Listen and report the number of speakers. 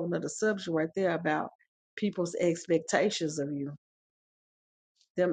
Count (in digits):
1